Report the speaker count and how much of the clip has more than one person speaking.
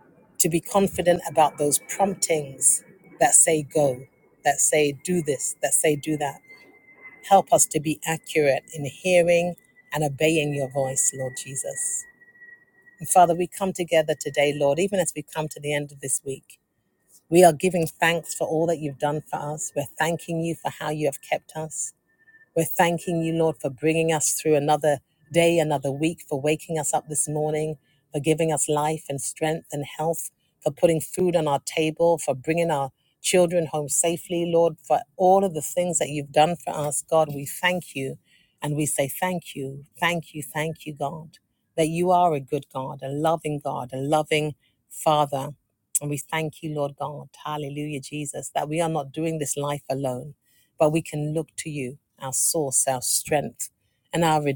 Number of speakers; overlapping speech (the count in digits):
1, no overlap